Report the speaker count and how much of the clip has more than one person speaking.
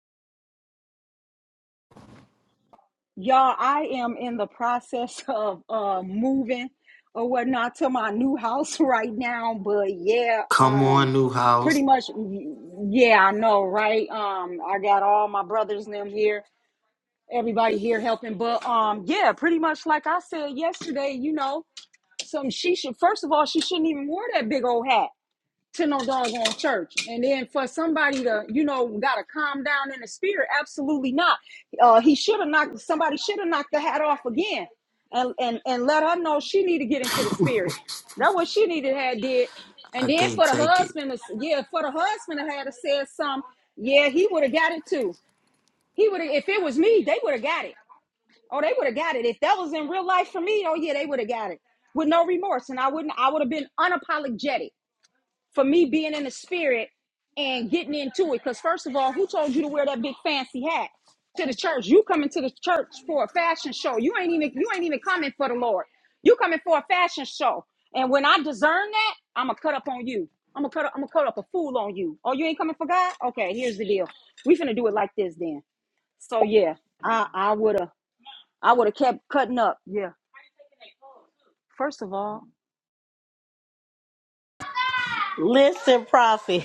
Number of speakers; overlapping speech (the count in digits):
3, about 2%